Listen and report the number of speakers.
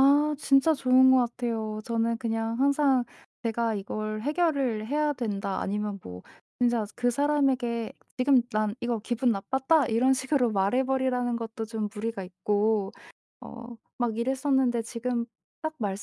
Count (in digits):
1